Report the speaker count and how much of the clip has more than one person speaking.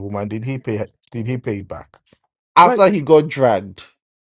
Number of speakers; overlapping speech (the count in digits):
2, about 5%